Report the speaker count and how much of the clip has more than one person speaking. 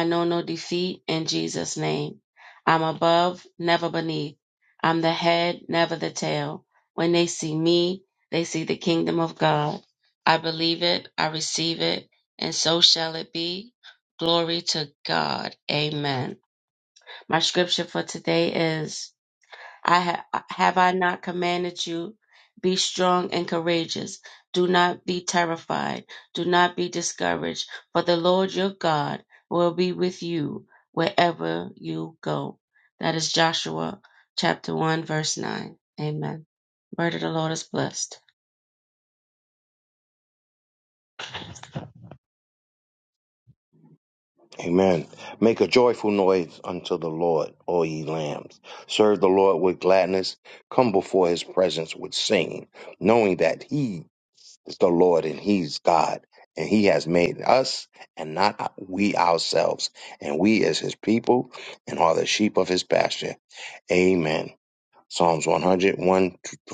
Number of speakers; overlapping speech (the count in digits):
2, no overlap